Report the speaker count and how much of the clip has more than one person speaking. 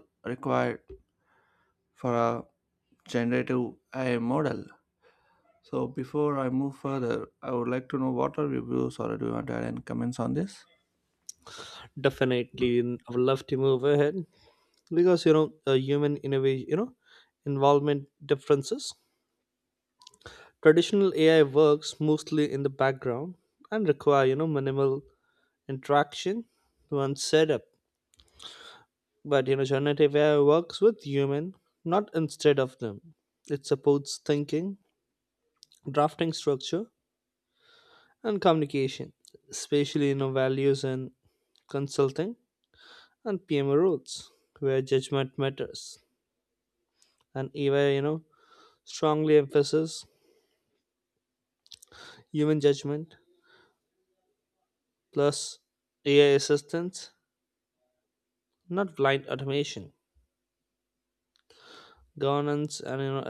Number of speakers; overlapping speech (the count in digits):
2, no overlap